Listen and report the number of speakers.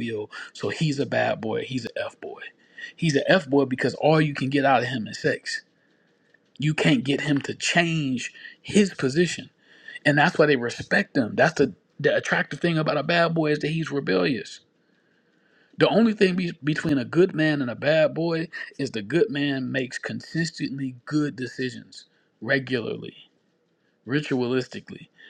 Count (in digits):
1